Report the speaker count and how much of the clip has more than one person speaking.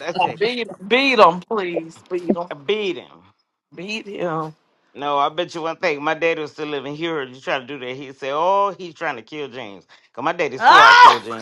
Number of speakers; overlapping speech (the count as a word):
two, no overlap